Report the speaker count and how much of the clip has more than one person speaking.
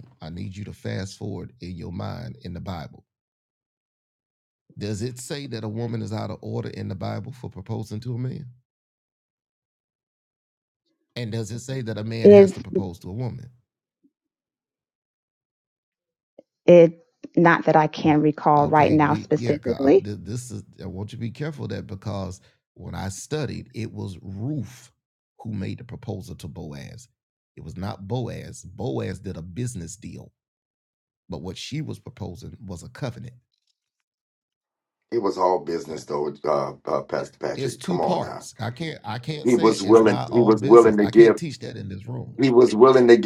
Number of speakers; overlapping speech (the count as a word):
three, about 10%